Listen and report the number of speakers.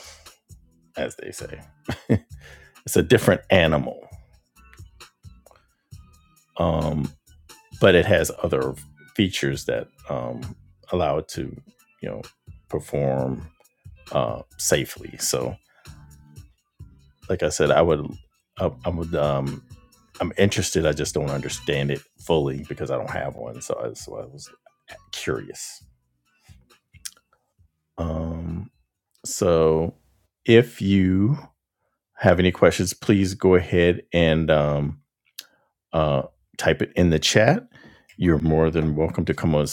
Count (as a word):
one